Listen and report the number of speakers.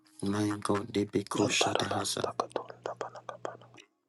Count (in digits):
2